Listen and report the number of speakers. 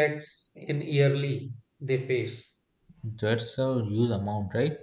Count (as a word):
two